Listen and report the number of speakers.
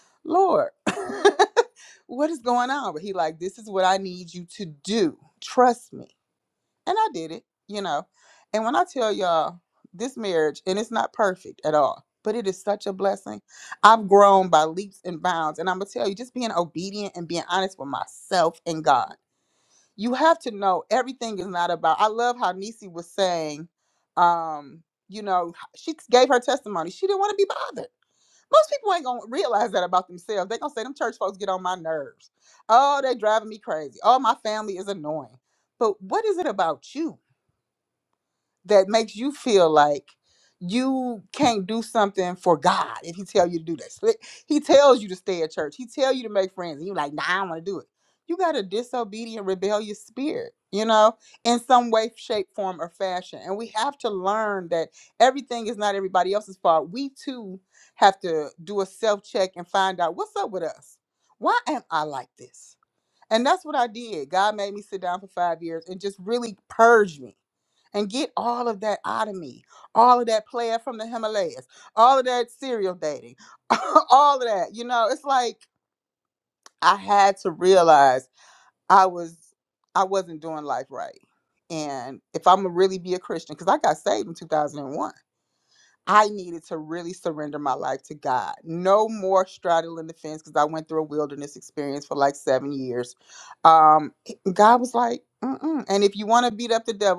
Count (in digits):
1